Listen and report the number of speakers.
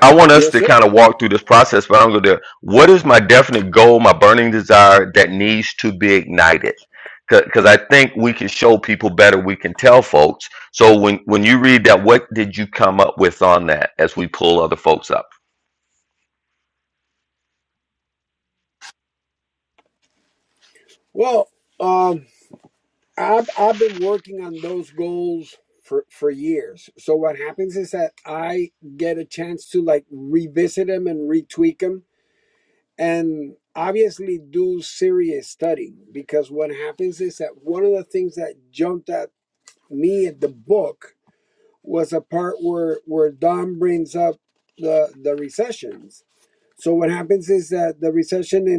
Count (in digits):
2